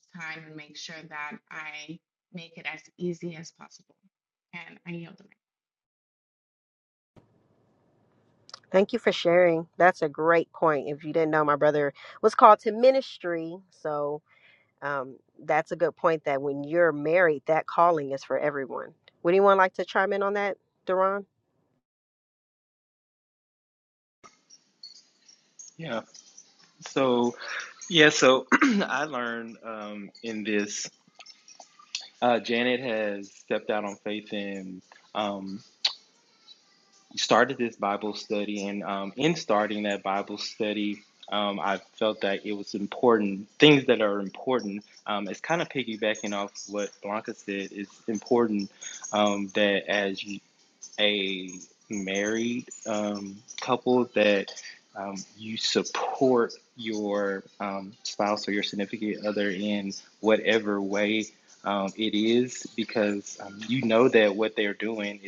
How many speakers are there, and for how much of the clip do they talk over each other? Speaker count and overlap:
three, no overlap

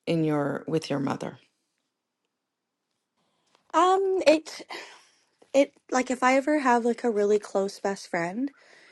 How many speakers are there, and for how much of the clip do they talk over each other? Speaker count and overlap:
two, no overlap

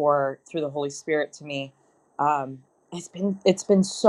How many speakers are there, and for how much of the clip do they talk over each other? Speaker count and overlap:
one, no overlap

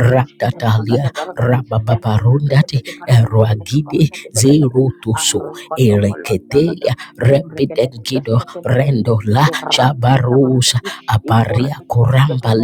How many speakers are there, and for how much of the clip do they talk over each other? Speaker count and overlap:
two, about 71%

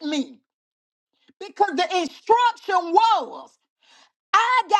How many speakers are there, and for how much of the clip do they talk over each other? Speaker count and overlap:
one, no overlap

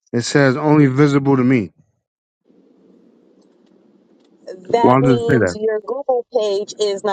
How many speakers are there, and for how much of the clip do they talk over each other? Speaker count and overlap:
two, about 10%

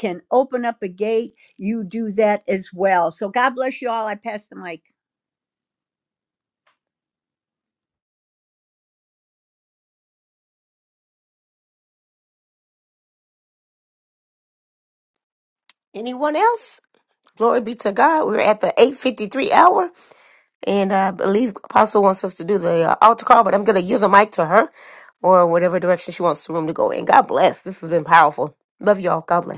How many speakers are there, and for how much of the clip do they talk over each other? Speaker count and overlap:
two, no overlap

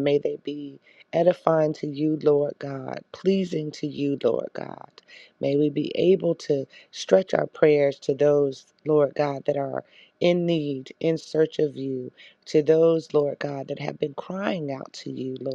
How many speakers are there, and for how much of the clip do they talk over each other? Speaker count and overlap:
one, no overlap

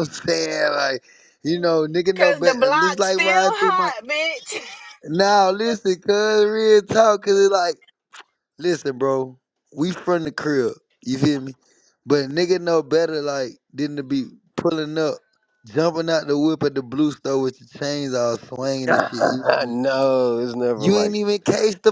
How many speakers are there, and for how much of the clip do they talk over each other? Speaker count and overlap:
three, about 14%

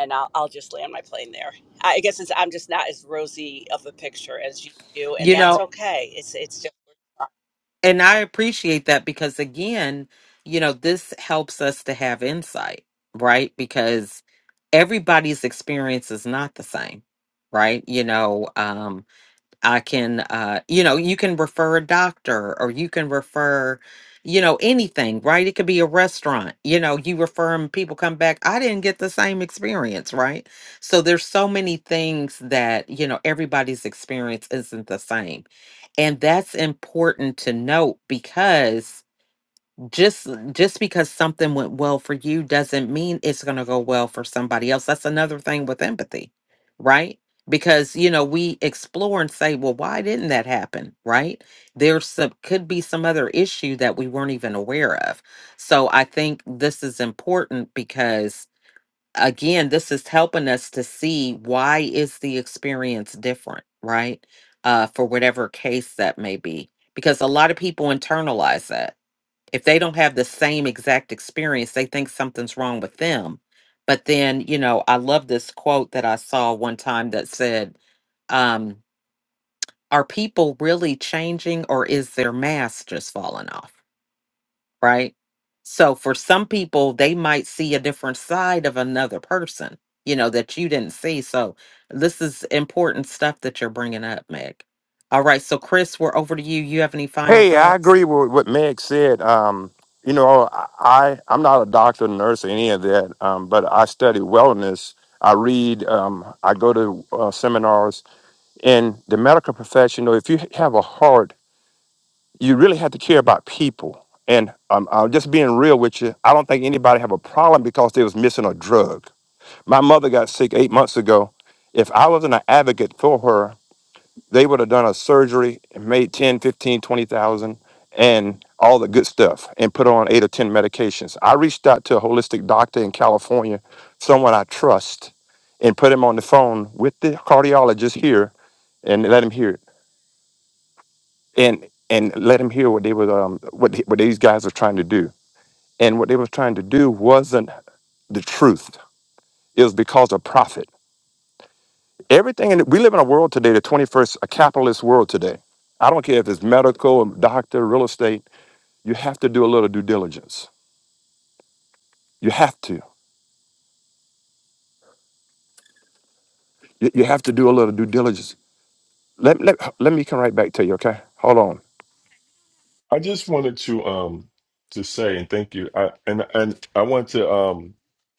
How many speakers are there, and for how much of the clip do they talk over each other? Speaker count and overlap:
four, about 1%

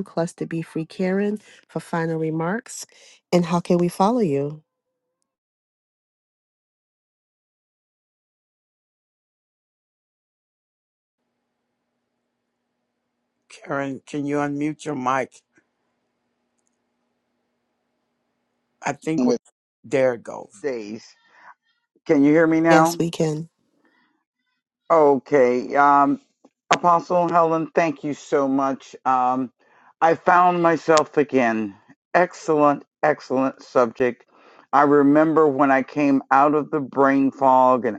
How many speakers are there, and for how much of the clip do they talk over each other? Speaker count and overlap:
three, about 1%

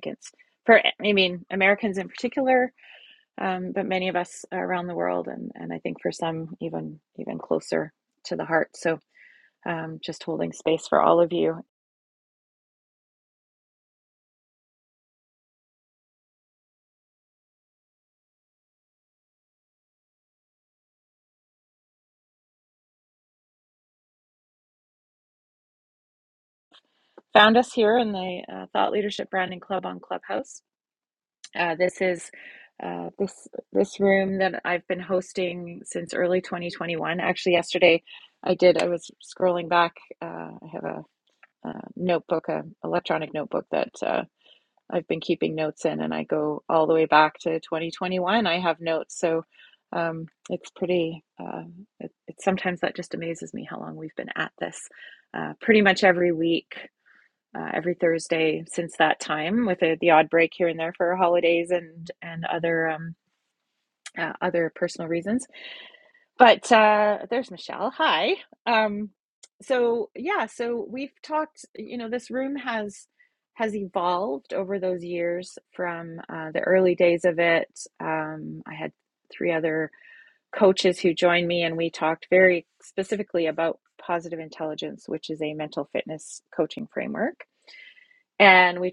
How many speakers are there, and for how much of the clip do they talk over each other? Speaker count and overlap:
one, no overlap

